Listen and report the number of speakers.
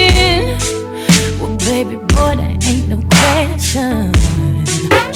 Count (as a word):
one